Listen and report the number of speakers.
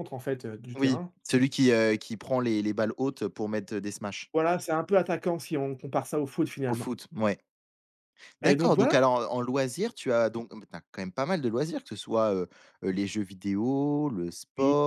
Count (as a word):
two